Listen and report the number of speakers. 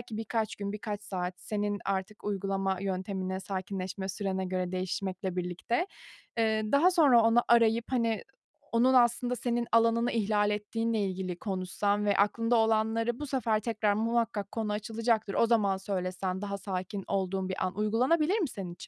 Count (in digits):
1